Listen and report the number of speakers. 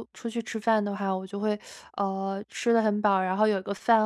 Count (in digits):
1